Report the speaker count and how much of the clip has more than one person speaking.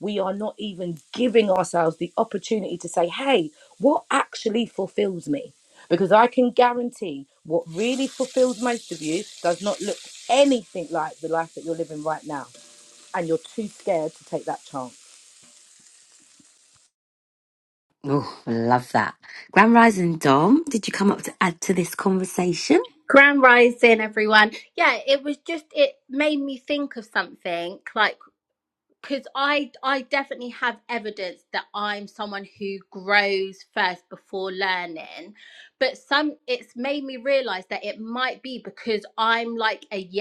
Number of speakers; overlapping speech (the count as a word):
three, no overlap